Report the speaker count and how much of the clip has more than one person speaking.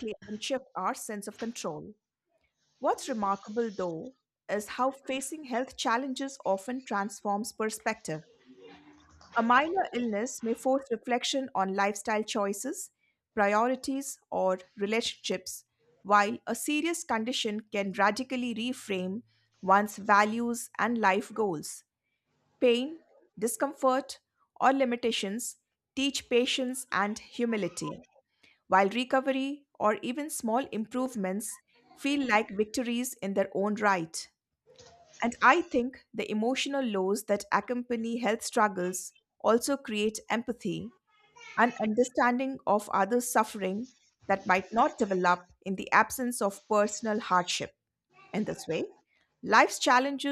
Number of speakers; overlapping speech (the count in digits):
1, no overlap